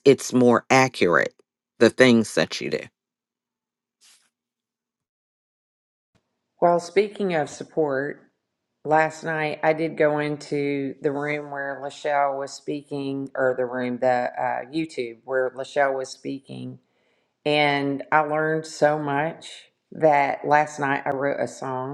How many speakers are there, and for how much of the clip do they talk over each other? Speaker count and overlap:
two, no overlap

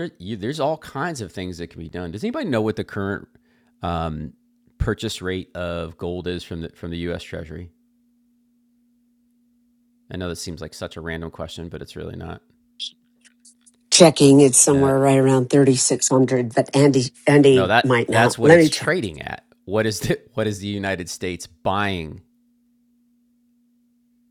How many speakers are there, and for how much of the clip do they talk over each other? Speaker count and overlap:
two, about 7%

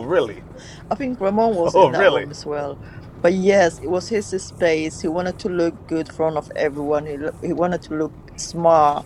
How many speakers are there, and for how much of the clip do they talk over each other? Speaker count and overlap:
two, about 7%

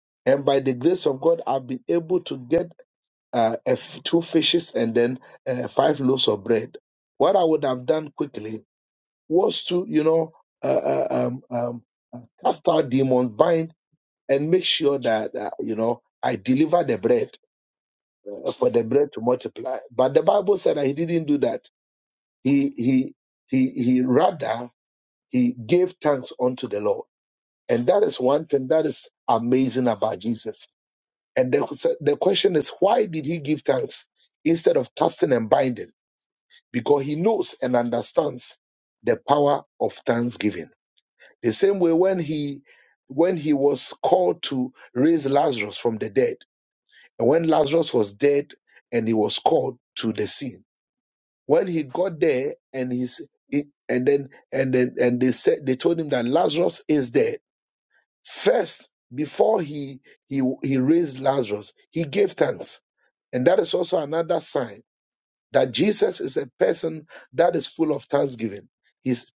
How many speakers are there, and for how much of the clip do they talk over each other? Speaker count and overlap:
one, no overlap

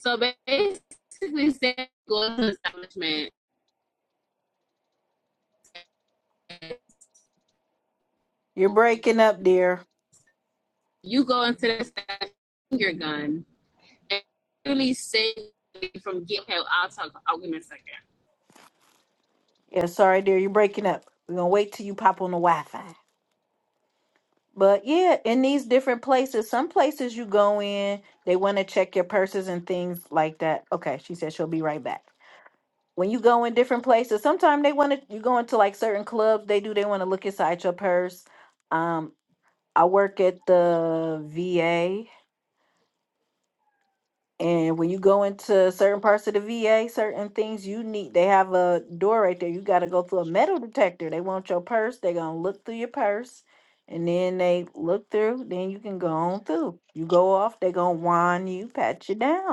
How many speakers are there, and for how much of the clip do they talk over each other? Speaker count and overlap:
two, no overlap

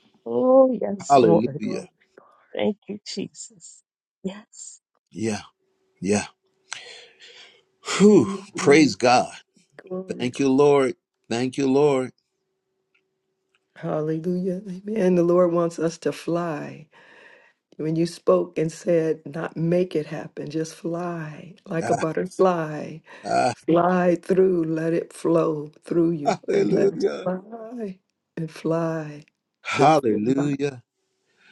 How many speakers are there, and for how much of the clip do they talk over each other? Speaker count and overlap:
three, about 12%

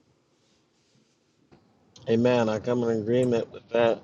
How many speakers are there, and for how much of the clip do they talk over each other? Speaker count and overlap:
one, no overlap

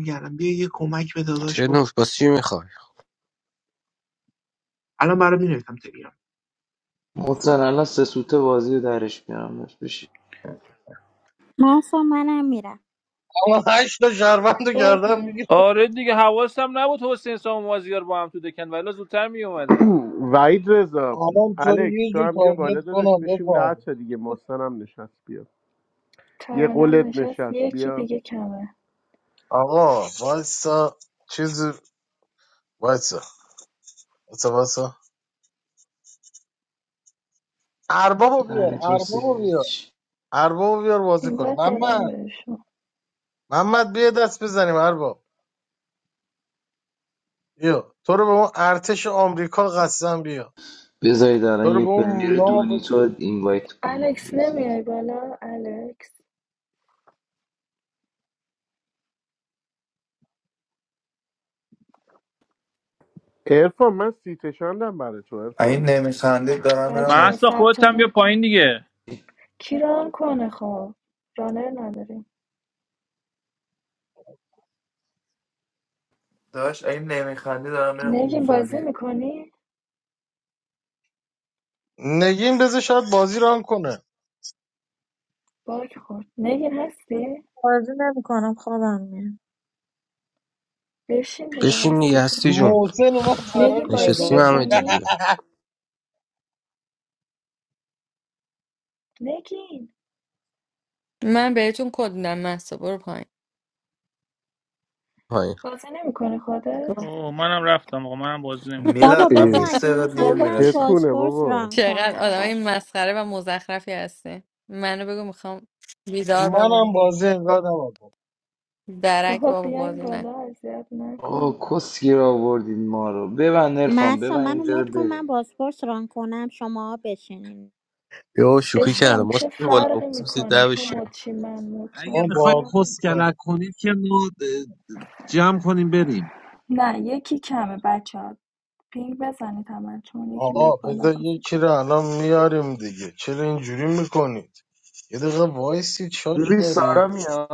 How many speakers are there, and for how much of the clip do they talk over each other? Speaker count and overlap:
twelve, about 18%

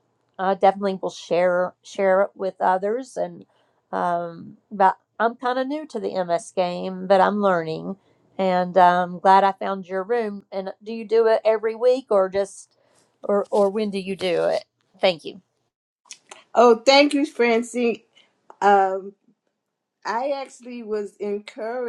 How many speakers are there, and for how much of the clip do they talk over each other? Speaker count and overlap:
two, no overlap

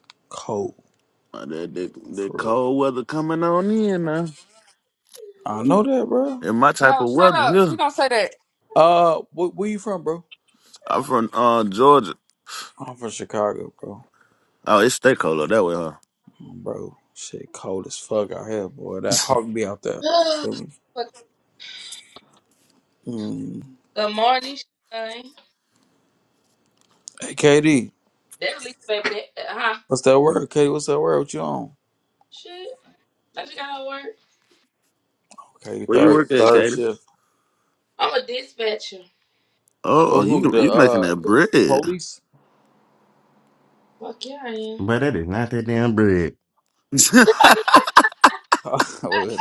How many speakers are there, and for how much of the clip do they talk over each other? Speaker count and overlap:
five, about 7%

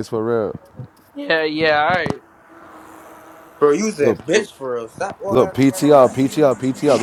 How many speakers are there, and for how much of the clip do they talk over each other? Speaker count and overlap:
three, about 14%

